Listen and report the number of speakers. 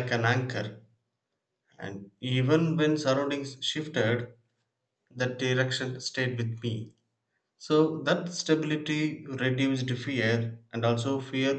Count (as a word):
one